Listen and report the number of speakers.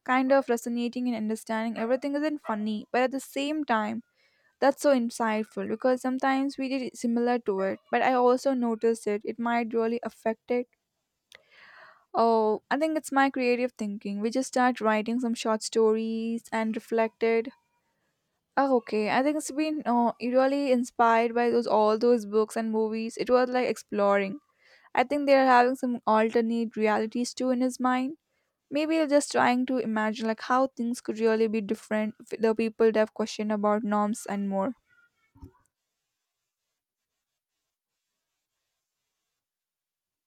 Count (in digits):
1